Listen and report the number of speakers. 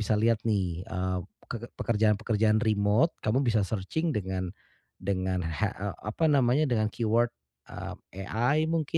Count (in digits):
1